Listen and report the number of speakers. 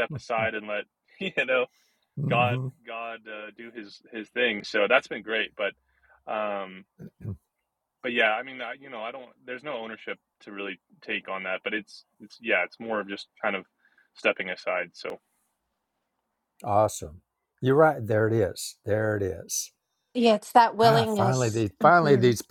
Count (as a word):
three